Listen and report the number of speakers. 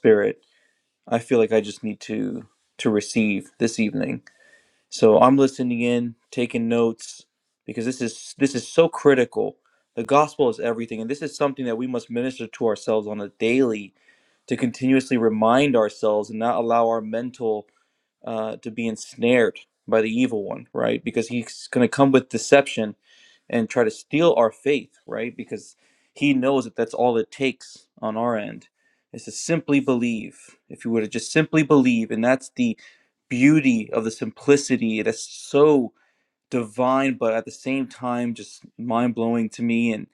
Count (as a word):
one